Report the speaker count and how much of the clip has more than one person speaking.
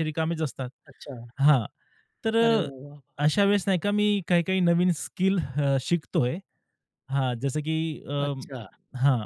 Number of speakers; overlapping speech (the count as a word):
two, about 5%